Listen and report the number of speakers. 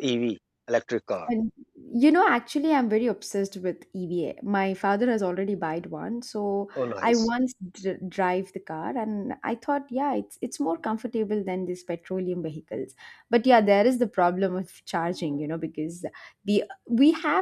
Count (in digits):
2